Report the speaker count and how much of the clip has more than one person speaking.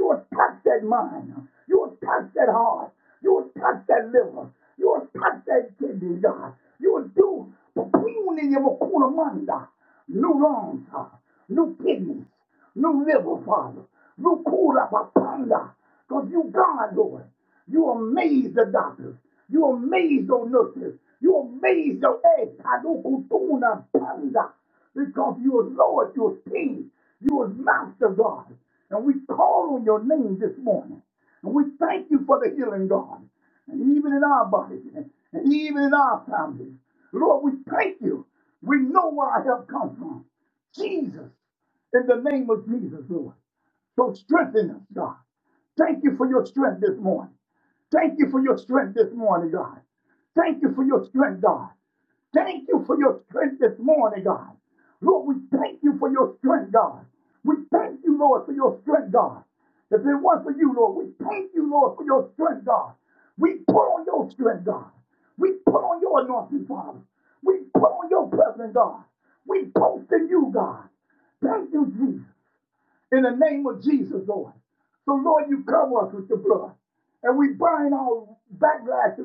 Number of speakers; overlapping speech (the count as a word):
one, no overlap